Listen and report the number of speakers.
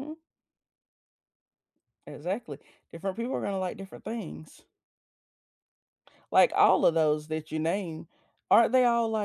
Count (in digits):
1